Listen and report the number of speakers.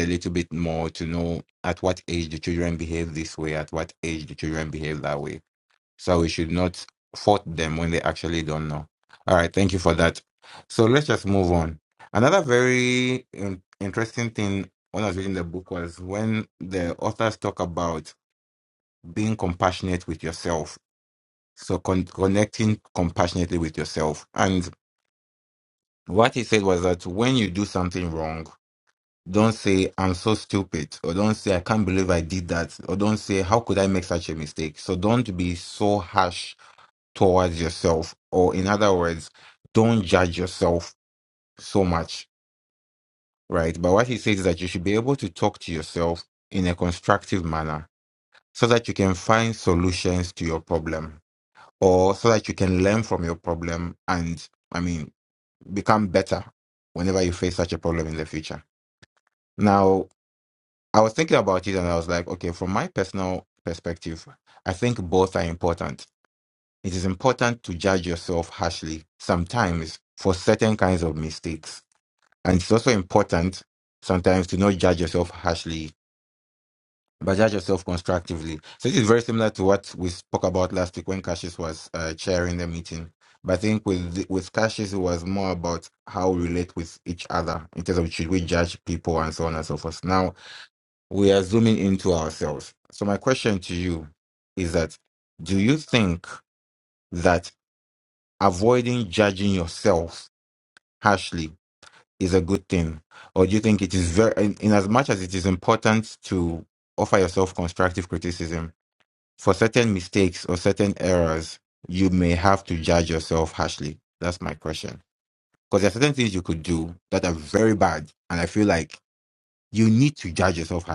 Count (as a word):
one